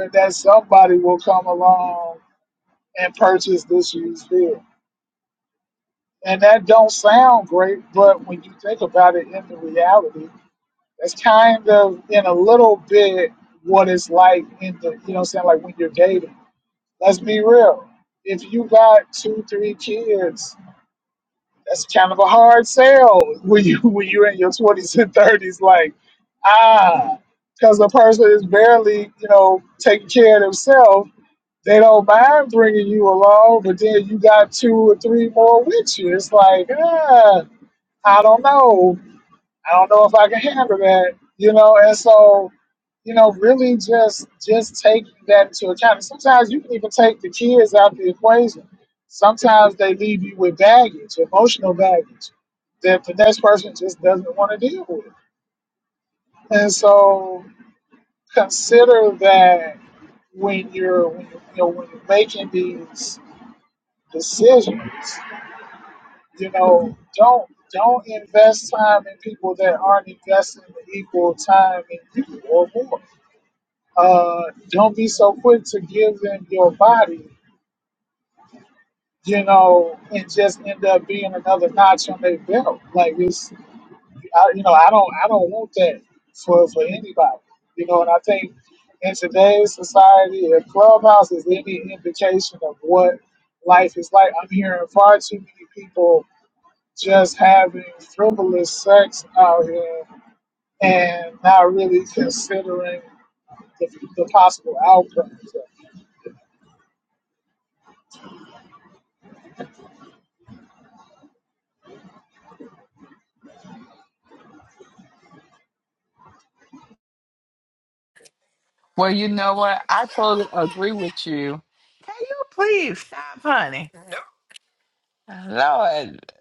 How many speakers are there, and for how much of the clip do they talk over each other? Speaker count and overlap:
2, no overlap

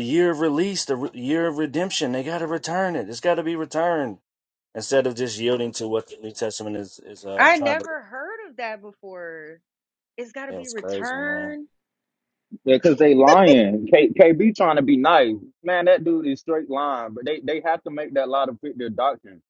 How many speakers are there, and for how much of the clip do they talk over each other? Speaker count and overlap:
3, about 7%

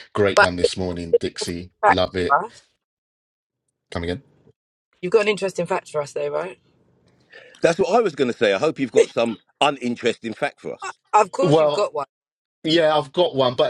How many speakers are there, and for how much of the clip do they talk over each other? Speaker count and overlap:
3, about 4%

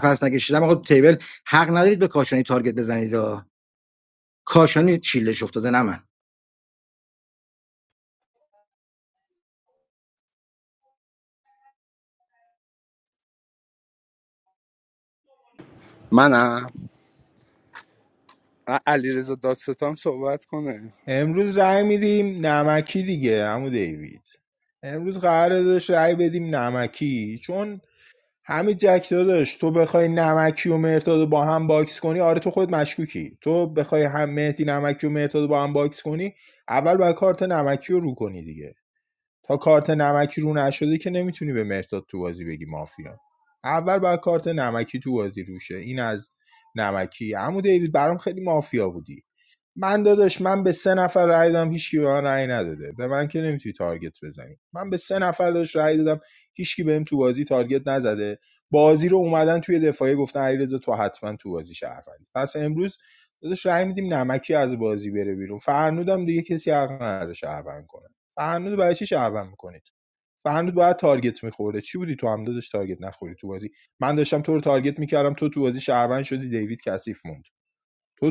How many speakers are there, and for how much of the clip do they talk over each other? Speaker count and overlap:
3, no overlap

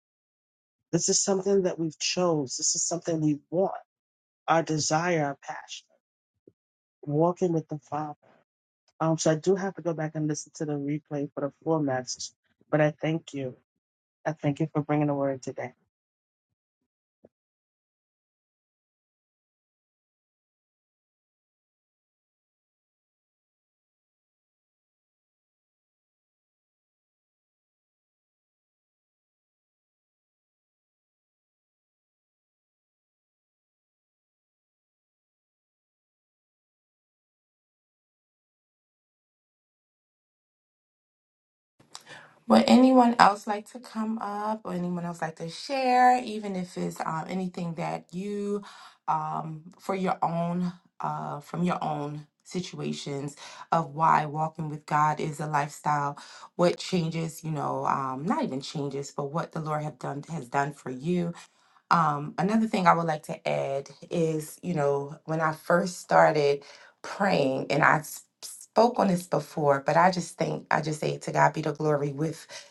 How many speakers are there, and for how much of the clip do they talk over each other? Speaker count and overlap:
2, no overlap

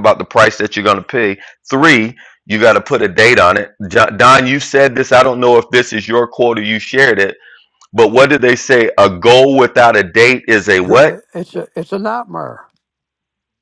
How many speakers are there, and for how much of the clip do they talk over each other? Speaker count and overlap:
2, about 2%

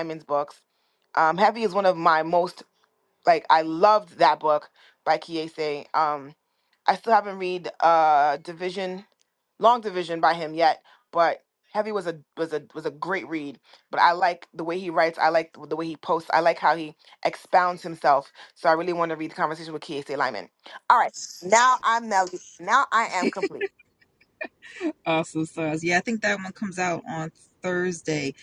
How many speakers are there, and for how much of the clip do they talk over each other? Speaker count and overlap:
2, no overlap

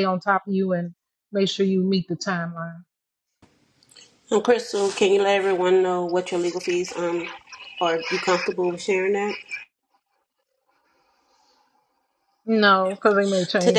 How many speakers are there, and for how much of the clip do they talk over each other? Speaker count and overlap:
2, about 1%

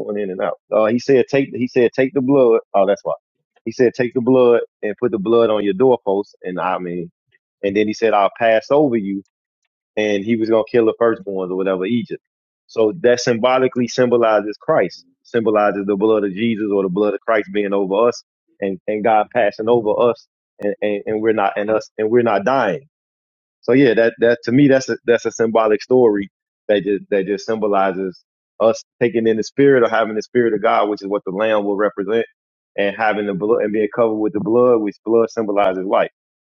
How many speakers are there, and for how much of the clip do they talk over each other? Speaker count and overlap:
1, no overlap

